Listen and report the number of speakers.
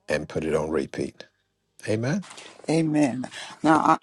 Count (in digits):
2